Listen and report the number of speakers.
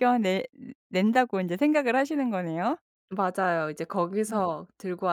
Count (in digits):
2